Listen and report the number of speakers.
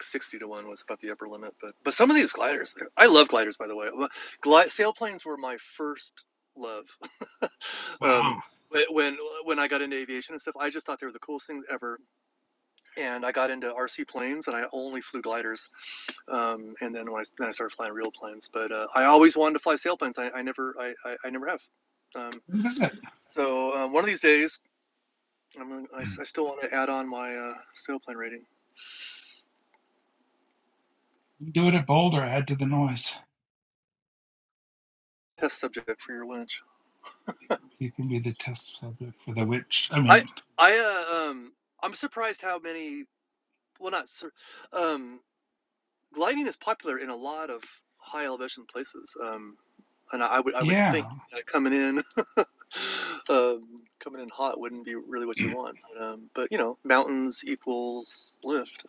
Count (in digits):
2